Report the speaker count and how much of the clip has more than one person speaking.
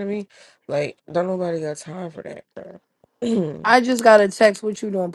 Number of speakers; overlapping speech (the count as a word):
two, about 1%